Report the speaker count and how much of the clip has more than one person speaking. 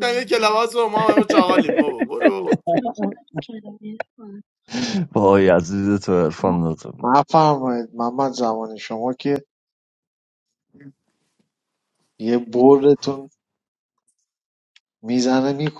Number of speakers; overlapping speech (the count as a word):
four, about 1%